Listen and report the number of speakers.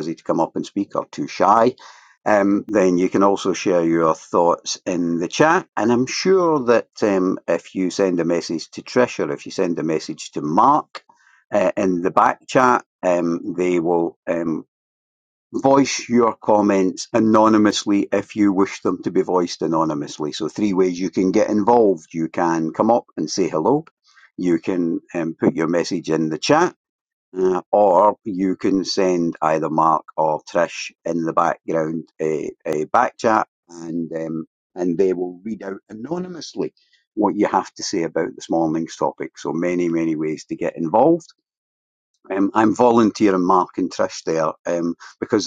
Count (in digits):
1